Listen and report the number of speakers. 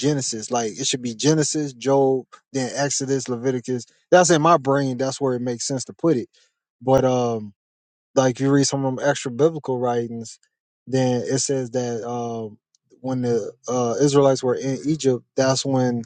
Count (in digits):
1